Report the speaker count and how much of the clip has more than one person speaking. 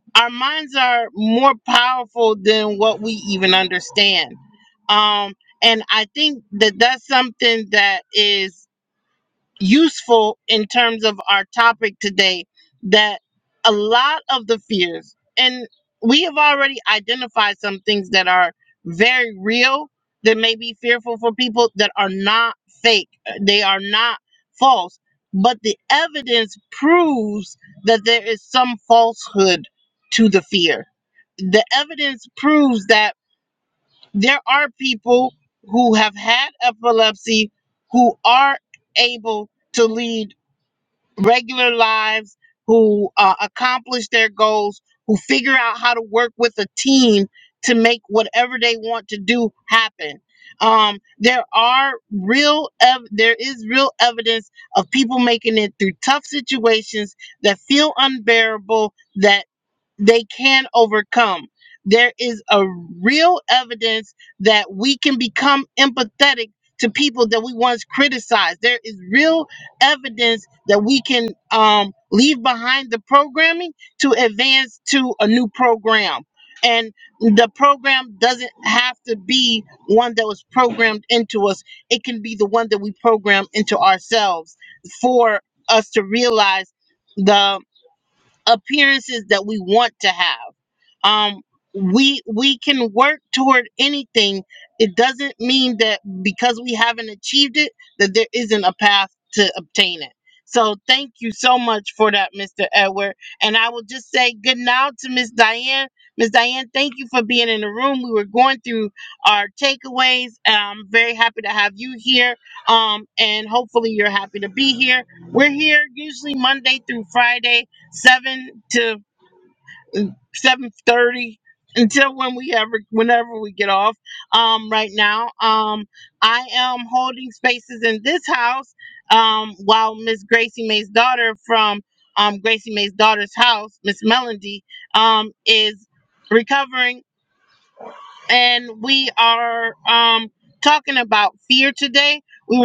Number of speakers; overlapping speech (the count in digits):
1, no overlap